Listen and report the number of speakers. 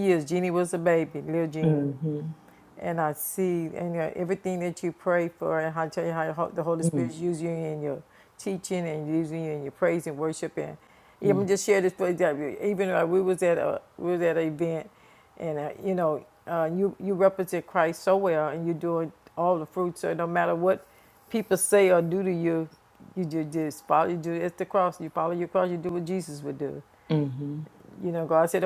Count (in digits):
2